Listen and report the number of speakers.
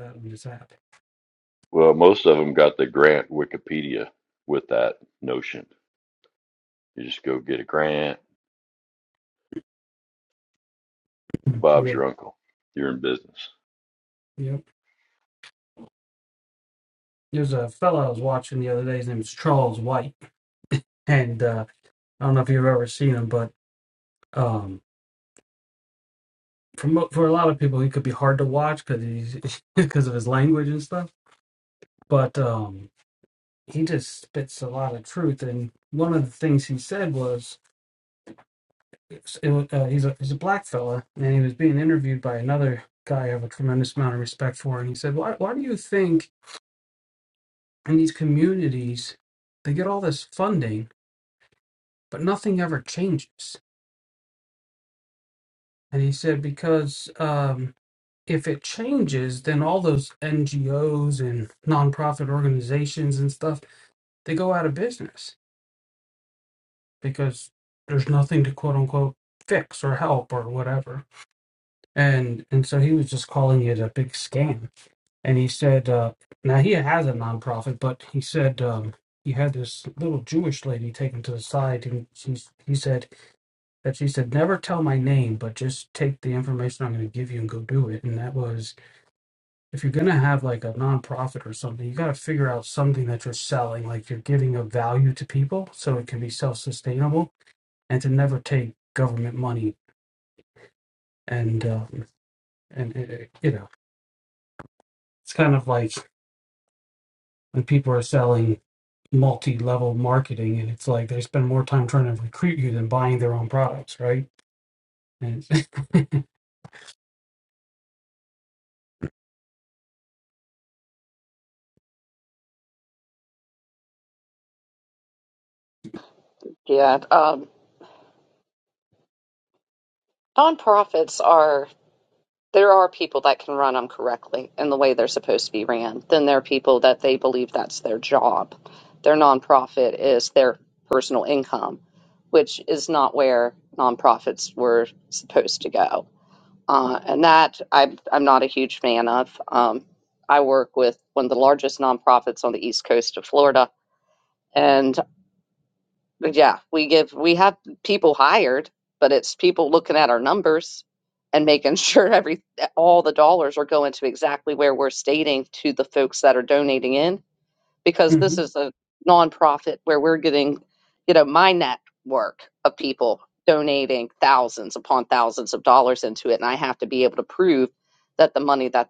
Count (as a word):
three